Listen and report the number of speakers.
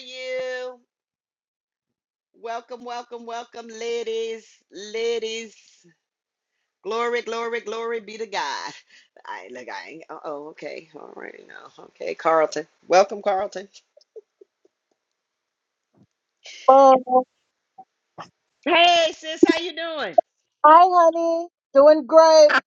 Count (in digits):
2